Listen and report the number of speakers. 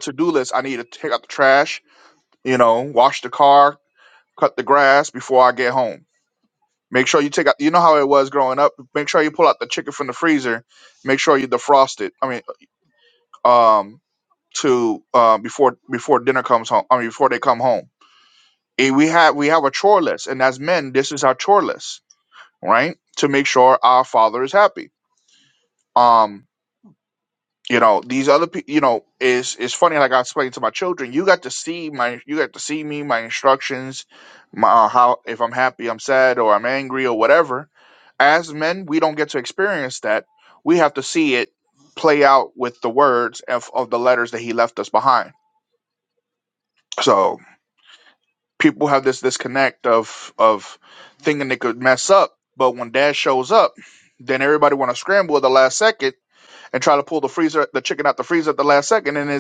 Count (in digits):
1